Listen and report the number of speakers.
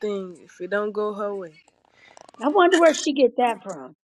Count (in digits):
2